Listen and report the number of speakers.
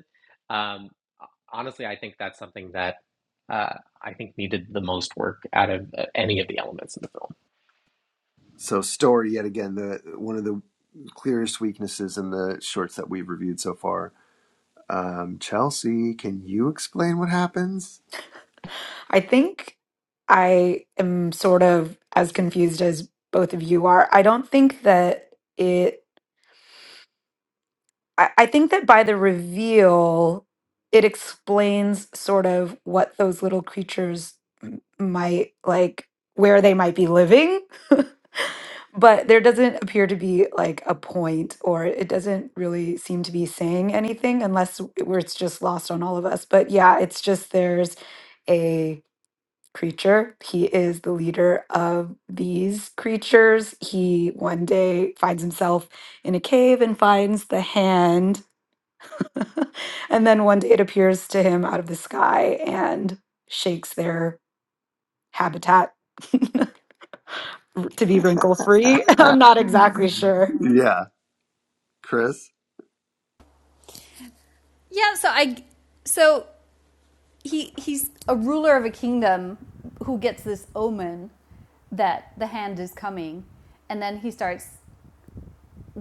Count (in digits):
4